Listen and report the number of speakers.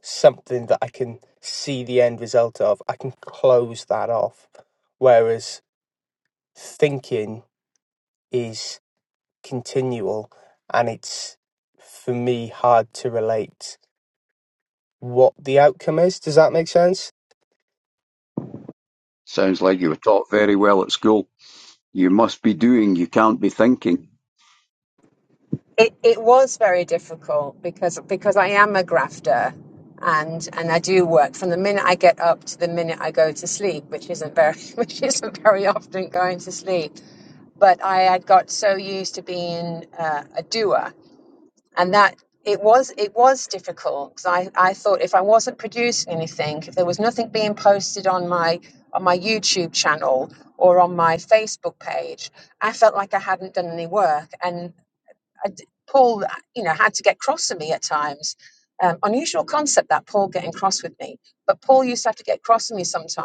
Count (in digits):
3